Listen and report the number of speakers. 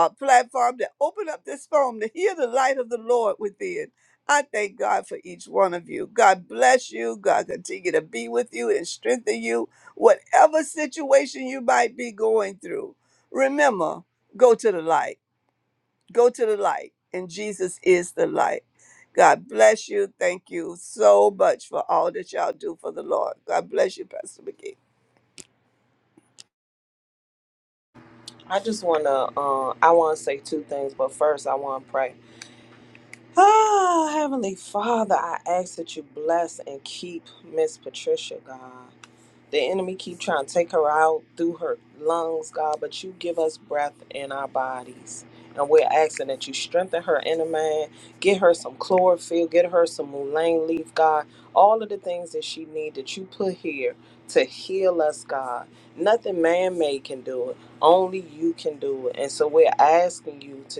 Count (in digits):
2